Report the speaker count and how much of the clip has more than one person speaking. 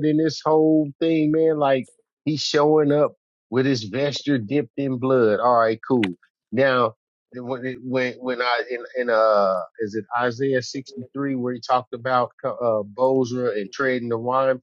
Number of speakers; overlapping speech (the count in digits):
1, no overlap